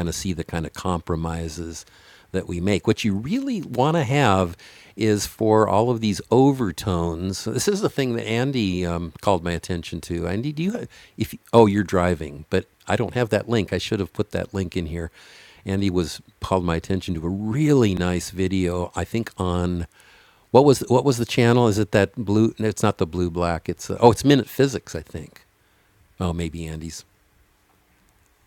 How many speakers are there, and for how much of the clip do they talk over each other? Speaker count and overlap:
one, no overlap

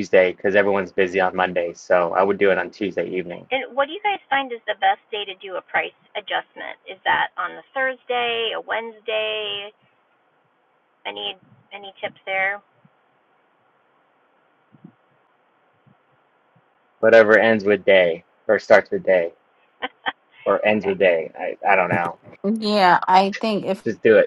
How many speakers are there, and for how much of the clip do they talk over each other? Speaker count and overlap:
three, no overlap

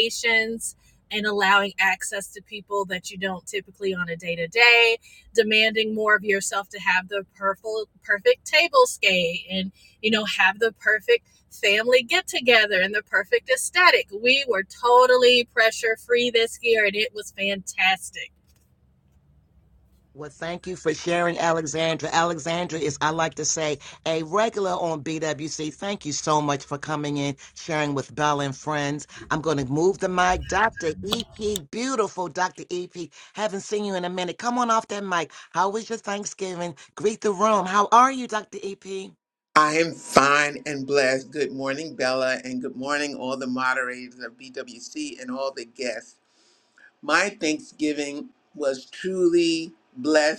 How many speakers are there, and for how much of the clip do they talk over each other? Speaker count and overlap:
three, no overlap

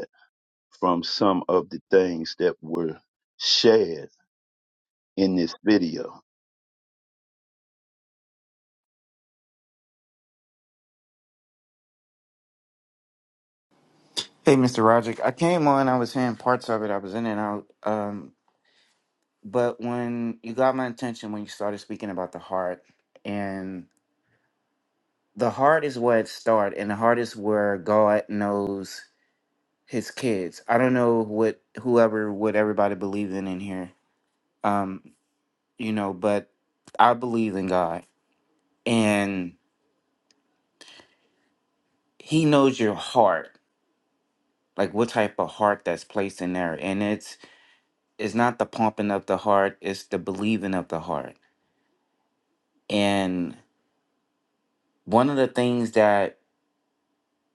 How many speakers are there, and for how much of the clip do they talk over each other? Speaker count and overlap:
two, no overlap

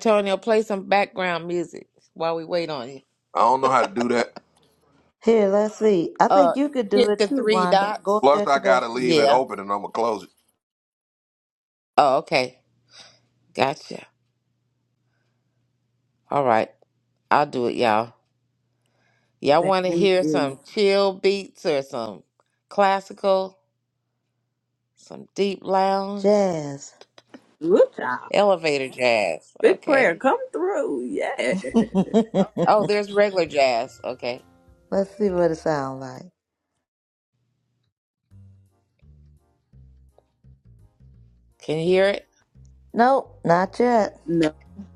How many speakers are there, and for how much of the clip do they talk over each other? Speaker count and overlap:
four, about 9%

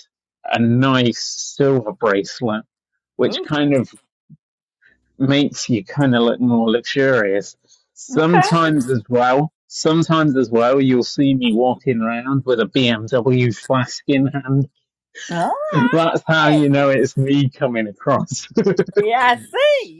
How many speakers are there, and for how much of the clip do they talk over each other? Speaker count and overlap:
two, about 4%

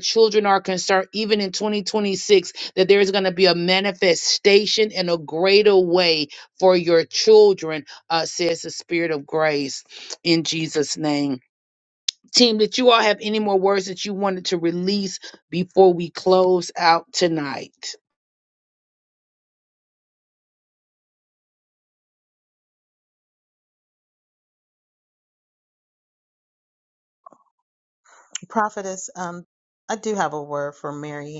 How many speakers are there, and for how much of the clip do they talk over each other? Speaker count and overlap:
two, no overlap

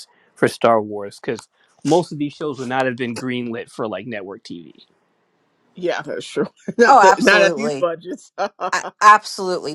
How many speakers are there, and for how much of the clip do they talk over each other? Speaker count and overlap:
three, about 12%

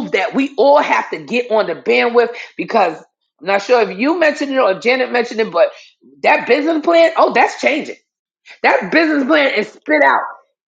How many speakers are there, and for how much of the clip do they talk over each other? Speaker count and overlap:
one, no overlap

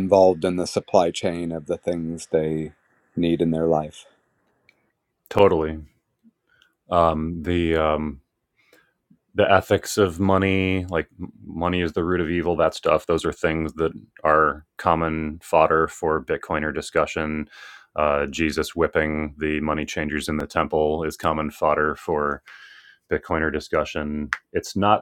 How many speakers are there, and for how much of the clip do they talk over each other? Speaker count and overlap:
two, no overlap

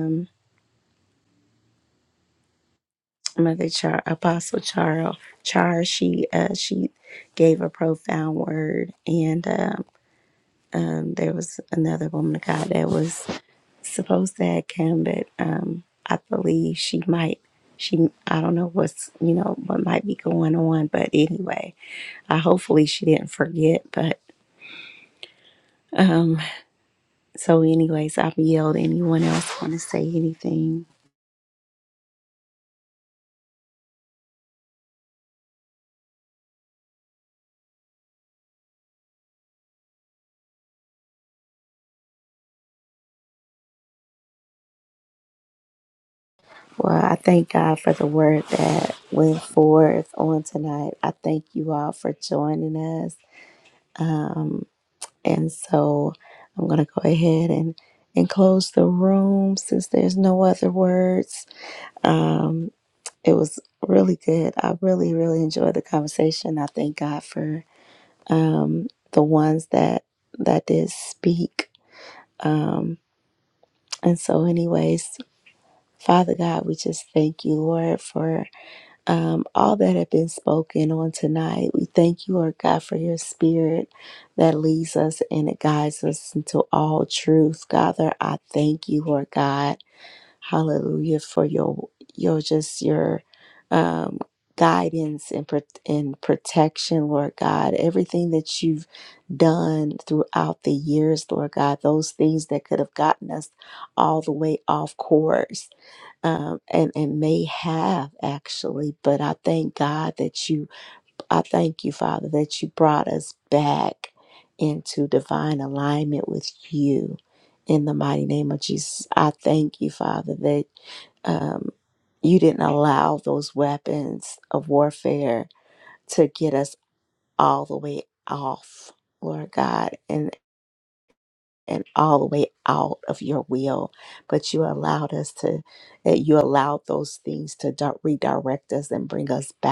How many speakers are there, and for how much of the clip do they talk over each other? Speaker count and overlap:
one, no overlap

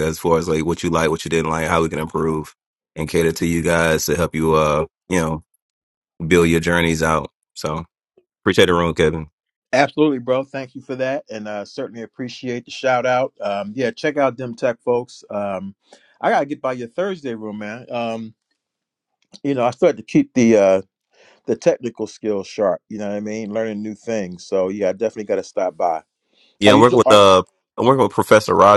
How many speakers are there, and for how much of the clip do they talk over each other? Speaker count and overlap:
two, about 2%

